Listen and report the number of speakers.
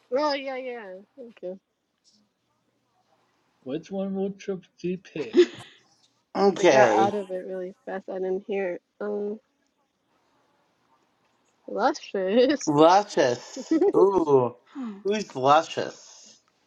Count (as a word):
three